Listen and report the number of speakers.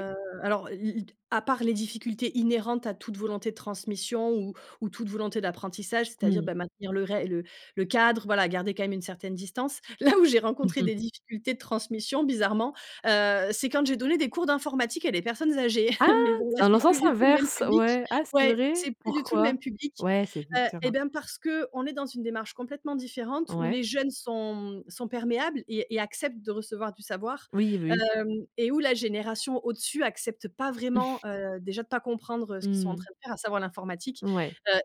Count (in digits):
2